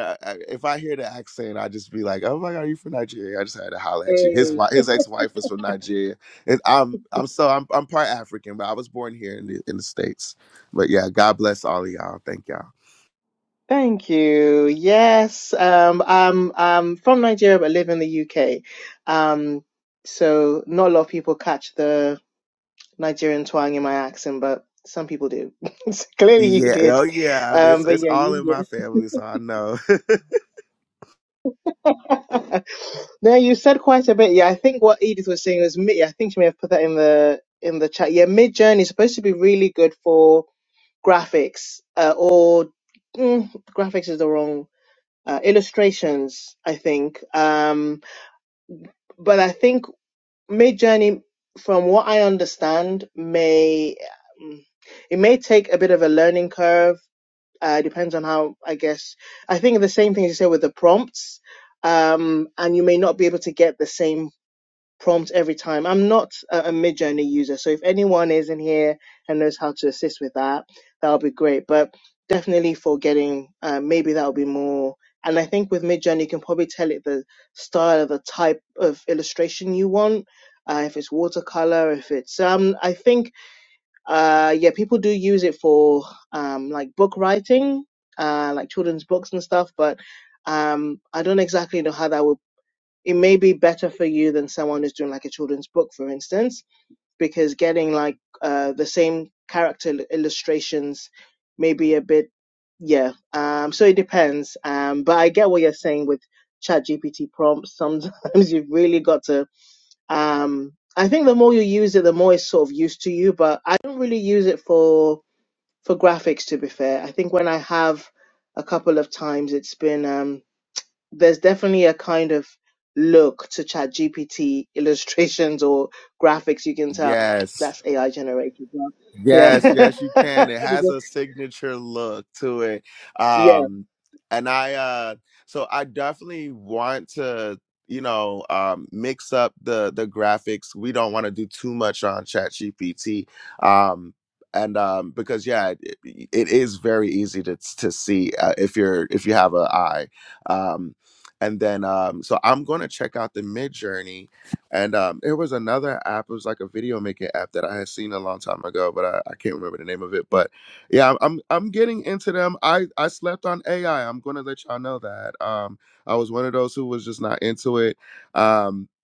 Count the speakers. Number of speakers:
2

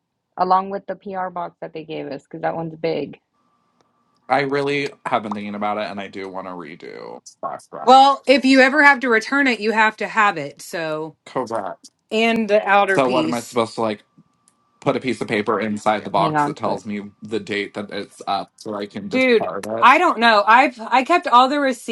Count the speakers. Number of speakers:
3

